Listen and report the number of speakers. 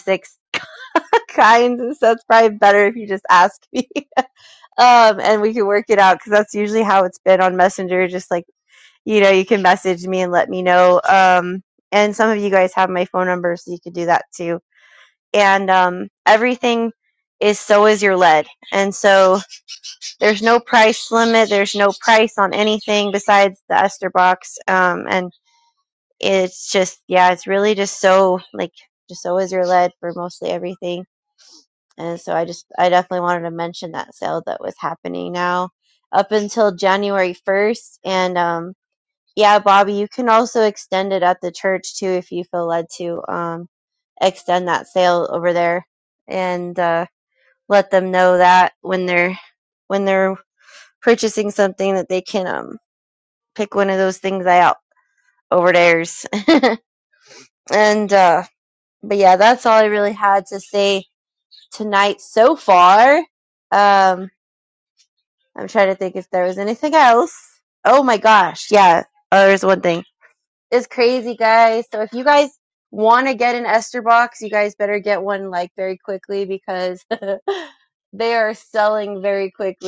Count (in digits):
1